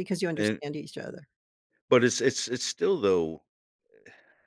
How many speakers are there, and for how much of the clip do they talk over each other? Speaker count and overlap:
two, about 6%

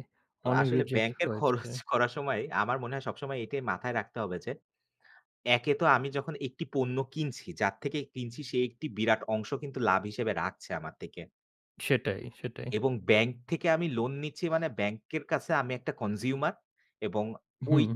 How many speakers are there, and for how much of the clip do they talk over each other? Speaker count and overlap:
two, about 9%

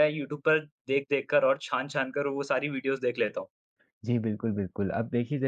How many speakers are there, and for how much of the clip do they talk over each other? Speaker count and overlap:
two, no overlap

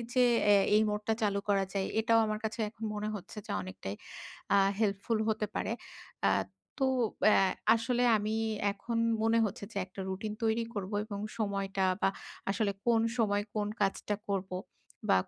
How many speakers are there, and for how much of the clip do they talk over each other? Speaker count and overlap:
one, no overlap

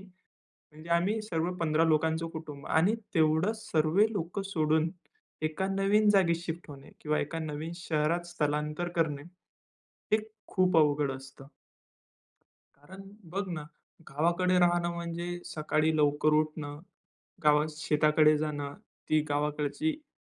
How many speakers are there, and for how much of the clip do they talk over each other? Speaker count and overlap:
one, no overlap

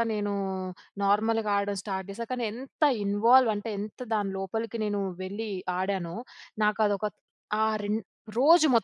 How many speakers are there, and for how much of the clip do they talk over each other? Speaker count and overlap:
one, no overlap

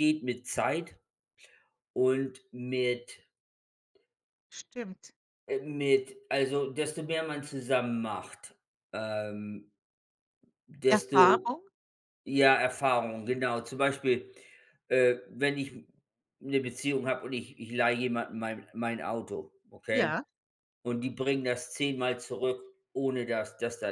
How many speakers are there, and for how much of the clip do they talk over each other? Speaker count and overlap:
two, about 3%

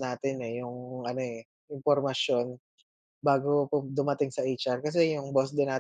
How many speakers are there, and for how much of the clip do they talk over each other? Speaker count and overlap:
one, no overlap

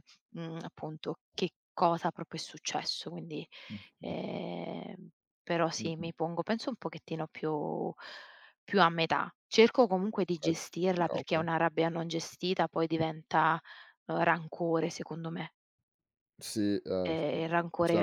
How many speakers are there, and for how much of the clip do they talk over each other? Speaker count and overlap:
two, about 6%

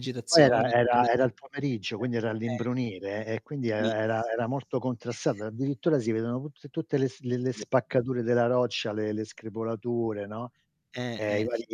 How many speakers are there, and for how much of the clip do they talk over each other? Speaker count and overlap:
two, about 9%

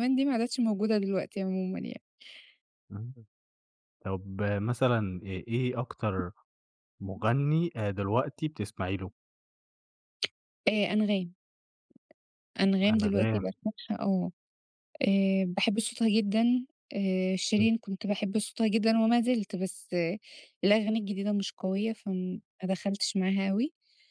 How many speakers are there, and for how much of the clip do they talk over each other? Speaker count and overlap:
two, about 3%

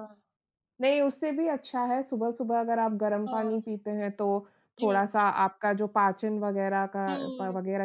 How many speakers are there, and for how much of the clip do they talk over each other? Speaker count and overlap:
two, about 13%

